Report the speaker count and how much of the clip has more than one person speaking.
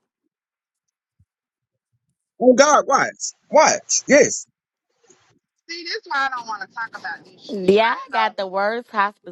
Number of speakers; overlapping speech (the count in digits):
3, about 9%